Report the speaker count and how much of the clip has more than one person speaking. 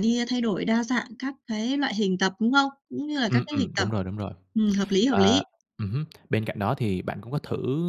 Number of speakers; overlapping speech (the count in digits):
2, about 12%